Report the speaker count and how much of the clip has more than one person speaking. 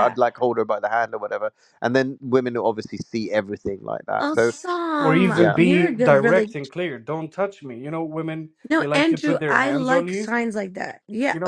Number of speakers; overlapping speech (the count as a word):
three, about 31%